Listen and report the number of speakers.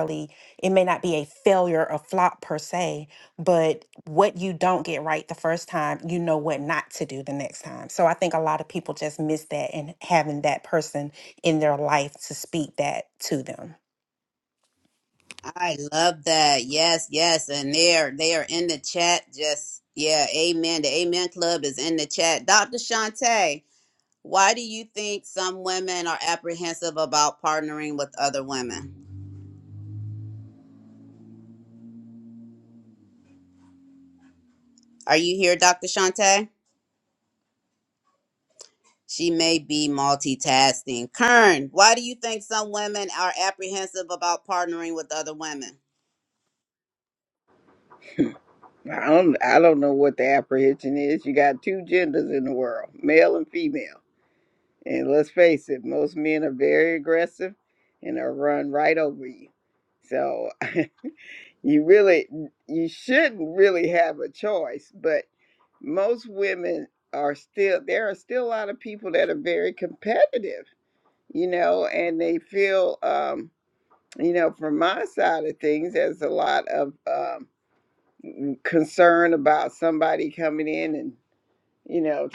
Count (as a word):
three